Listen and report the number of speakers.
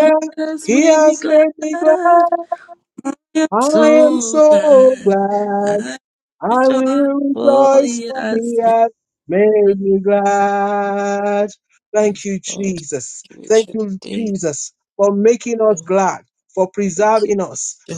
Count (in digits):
2